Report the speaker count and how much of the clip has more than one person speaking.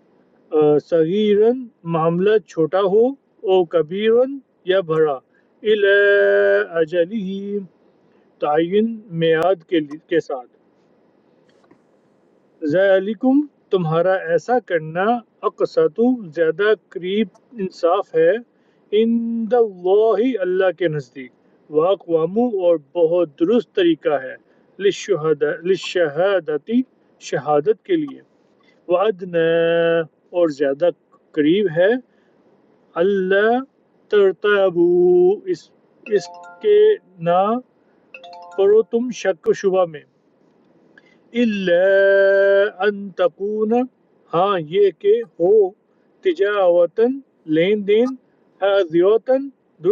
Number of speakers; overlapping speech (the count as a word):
one, no overlap